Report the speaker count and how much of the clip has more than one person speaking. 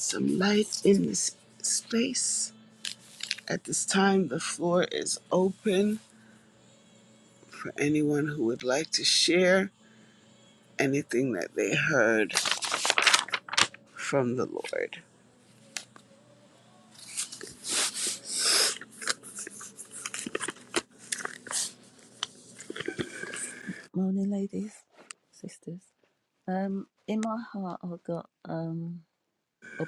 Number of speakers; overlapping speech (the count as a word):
two, no overlap